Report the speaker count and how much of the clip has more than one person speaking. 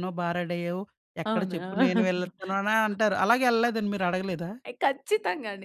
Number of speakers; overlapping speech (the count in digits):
2, about 6%